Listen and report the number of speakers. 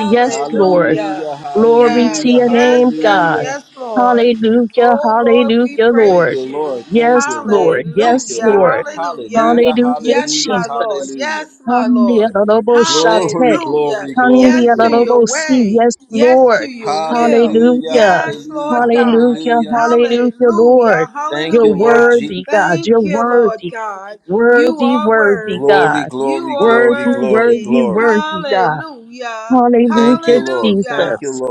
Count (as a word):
three